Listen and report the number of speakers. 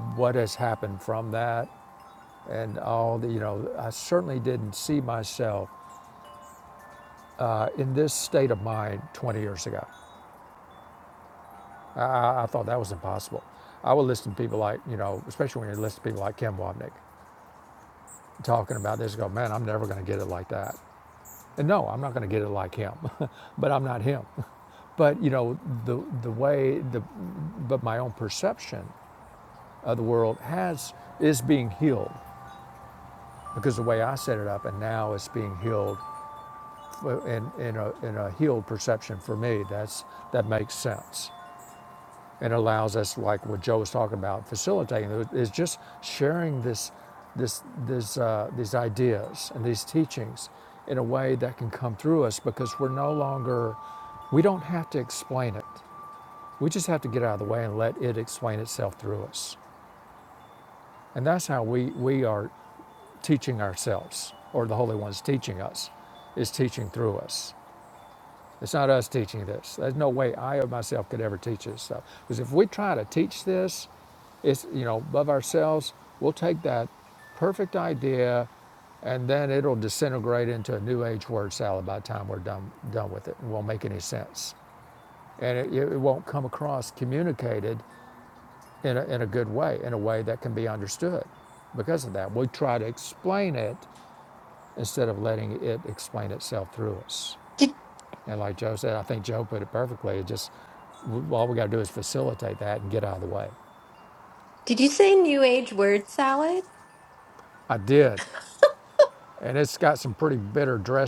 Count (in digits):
2